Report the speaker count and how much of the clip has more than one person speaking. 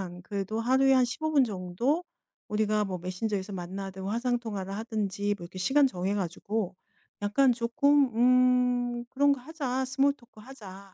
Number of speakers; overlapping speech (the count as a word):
one, no overlap